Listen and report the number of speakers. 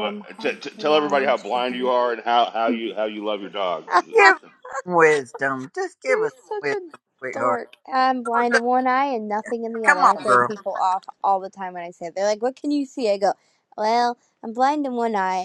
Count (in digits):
3